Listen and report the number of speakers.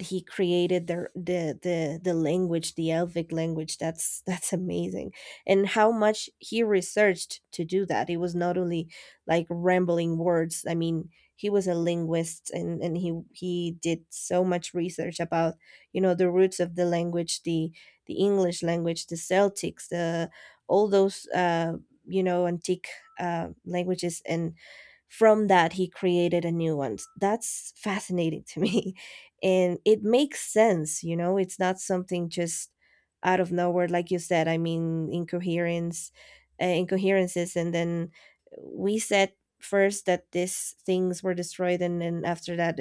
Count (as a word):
one